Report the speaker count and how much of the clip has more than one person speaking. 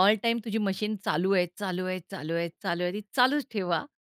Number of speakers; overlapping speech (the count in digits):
1, no overlap